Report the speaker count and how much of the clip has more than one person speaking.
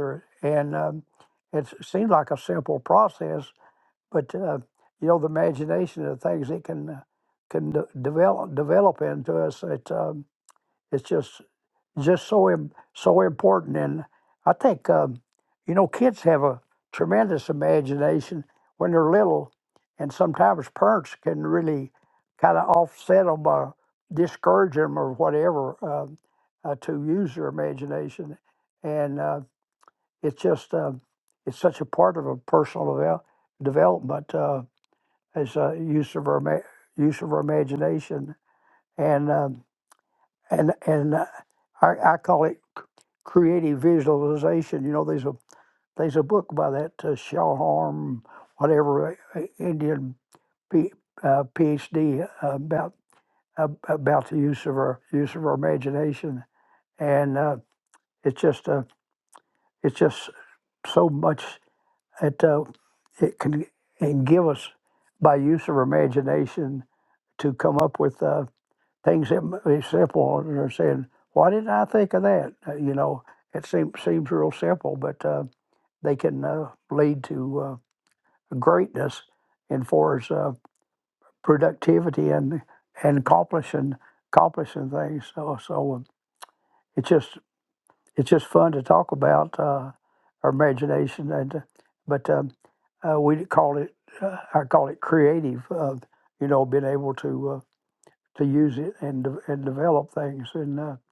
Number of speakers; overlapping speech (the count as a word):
one, no overlap